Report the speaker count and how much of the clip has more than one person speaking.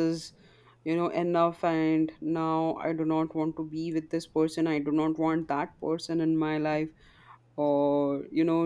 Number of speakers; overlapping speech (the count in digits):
1, no overlap